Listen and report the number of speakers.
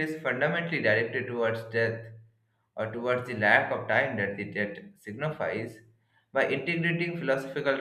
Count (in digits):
1